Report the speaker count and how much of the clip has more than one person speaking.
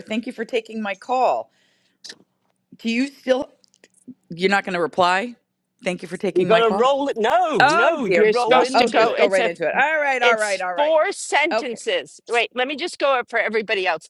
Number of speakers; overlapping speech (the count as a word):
three, about 24%